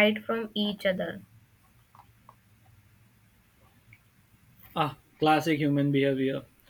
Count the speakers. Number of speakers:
two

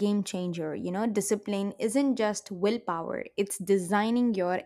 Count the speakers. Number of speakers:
one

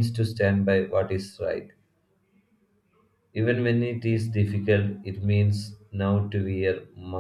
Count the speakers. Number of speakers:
one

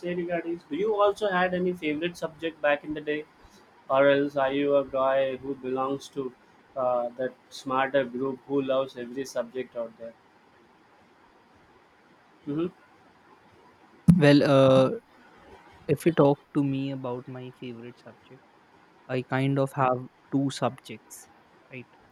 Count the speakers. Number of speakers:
two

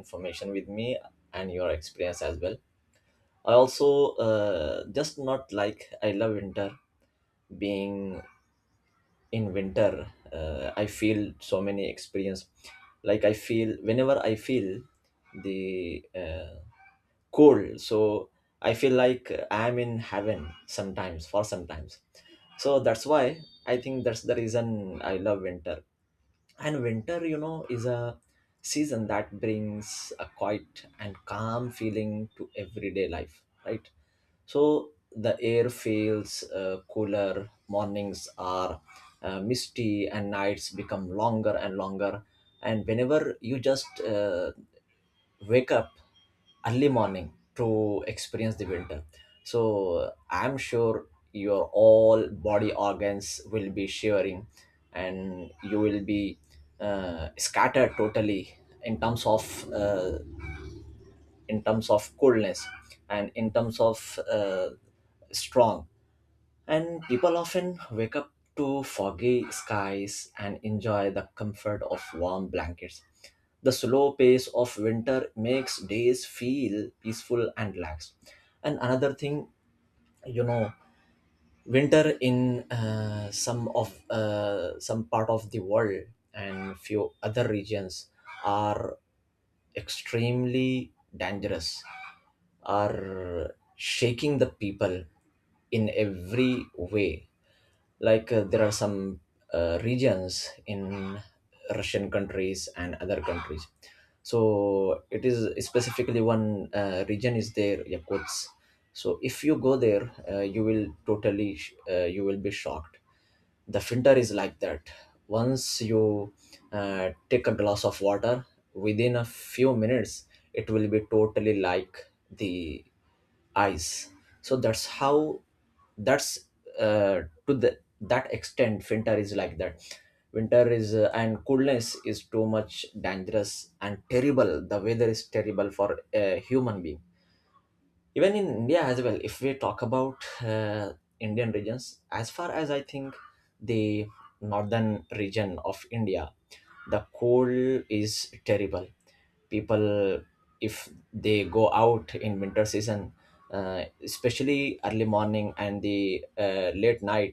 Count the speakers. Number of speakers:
one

